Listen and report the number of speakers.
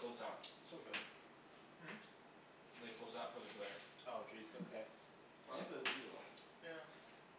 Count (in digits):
3